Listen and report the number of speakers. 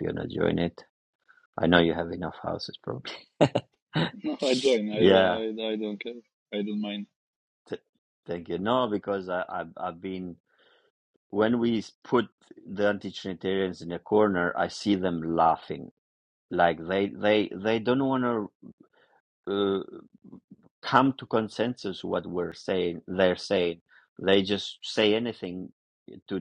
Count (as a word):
two